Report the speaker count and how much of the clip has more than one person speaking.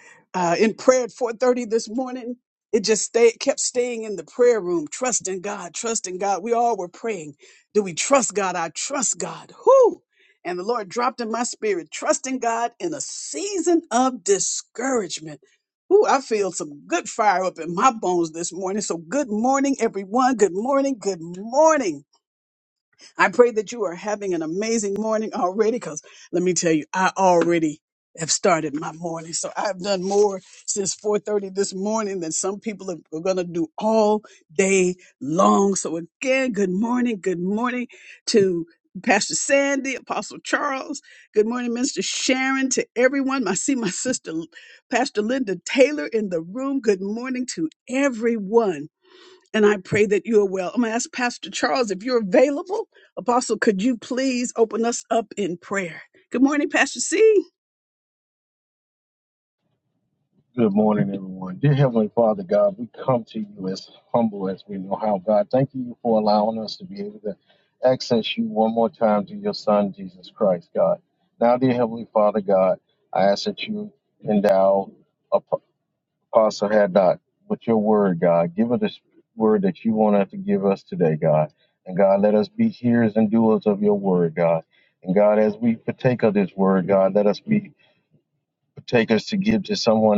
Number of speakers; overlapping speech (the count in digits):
2, no overlap